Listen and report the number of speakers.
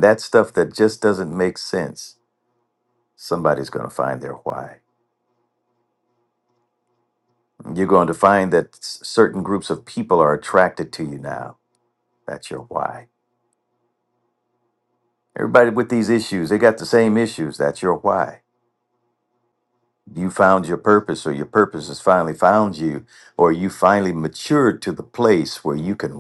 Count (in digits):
1